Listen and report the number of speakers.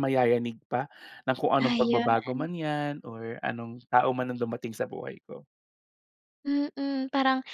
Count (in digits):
2